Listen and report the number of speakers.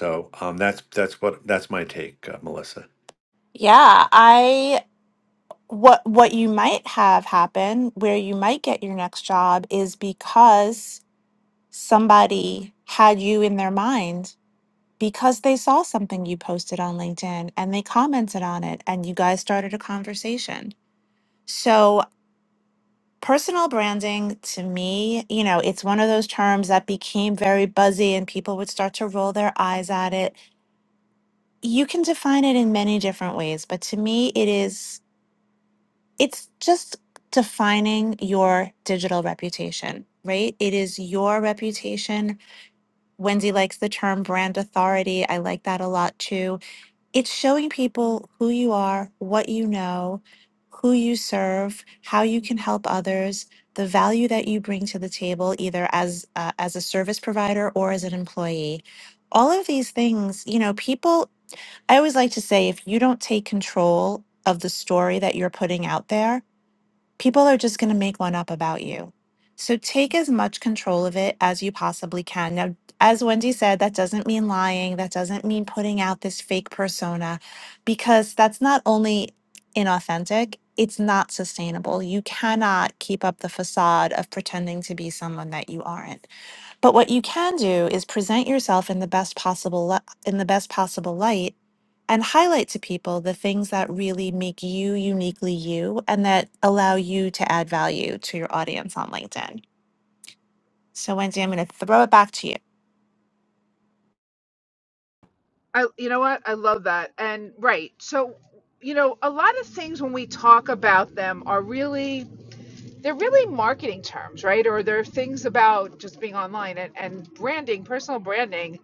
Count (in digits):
3